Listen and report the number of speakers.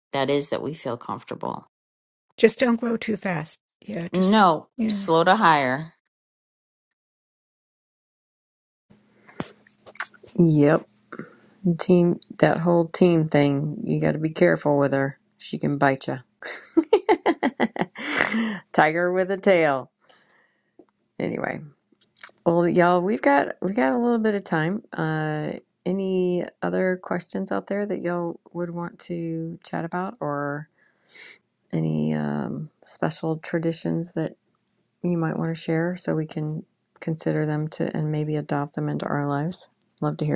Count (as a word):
three